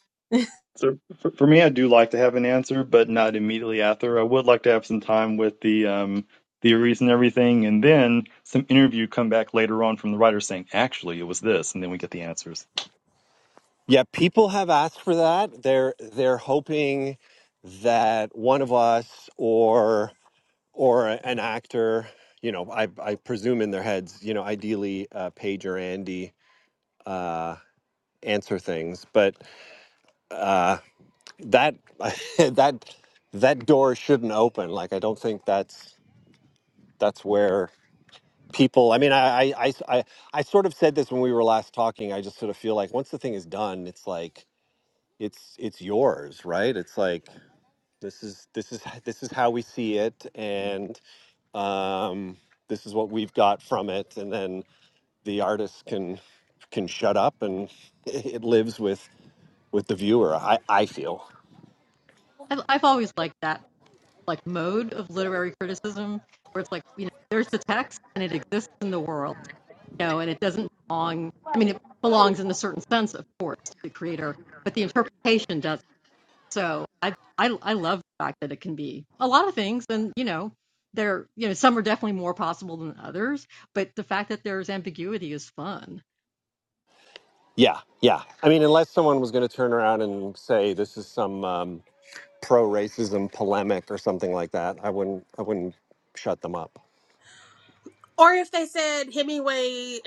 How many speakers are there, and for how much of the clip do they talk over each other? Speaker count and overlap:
4, no overlap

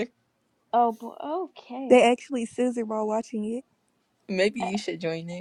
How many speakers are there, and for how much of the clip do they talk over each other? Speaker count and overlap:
3, about 2%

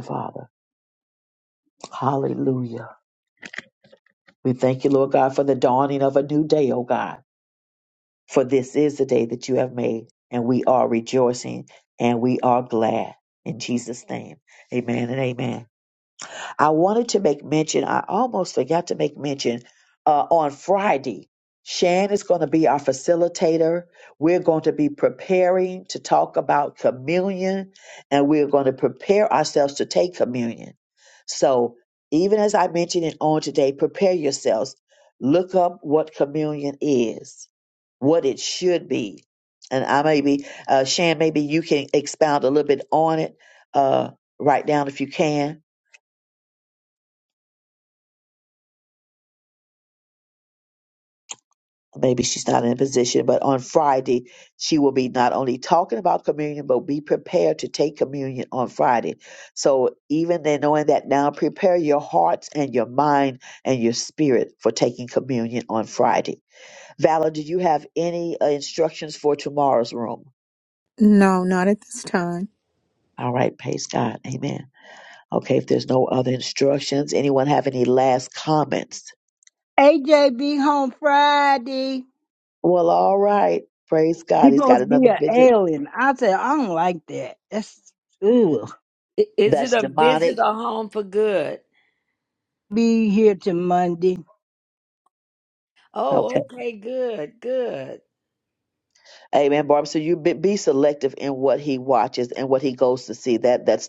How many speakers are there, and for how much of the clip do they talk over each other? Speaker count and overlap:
4, about 2%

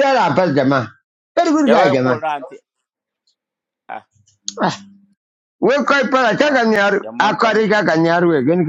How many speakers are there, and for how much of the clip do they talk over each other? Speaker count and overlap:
2, about 18%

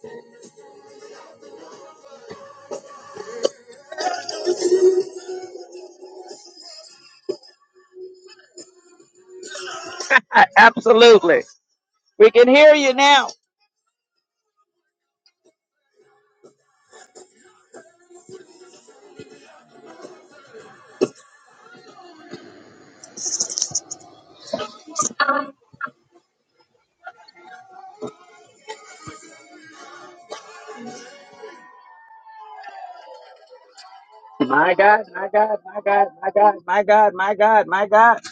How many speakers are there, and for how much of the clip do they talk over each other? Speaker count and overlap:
1, no overlap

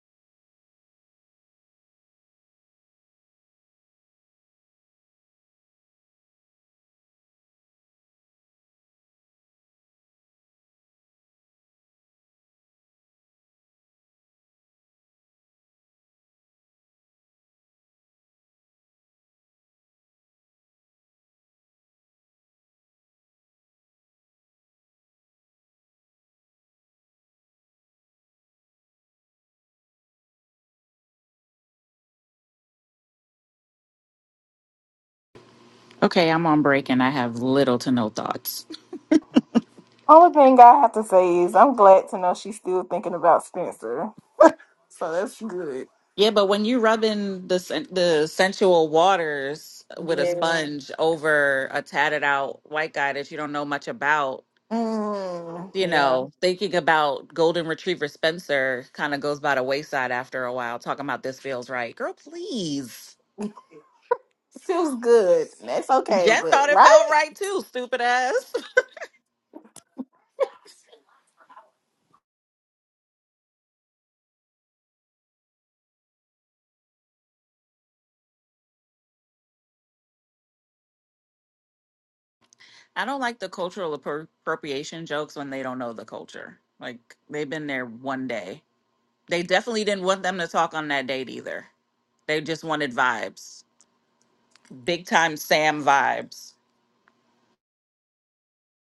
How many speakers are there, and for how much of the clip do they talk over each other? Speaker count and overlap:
2, about 2%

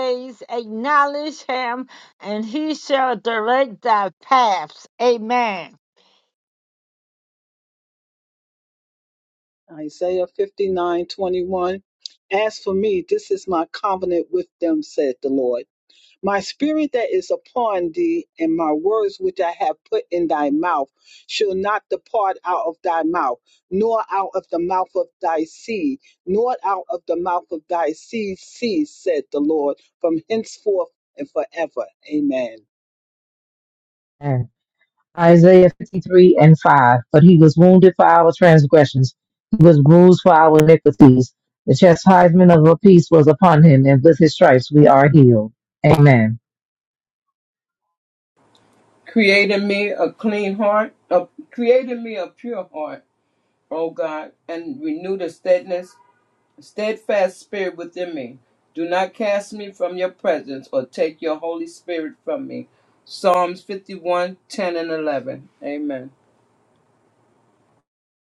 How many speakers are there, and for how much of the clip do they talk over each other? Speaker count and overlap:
4, no overlap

